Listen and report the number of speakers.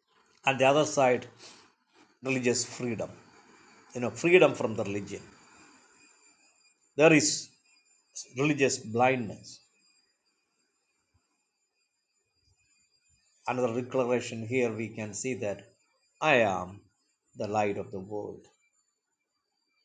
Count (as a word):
one